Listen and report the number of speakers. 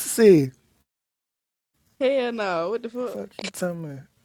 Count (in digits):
2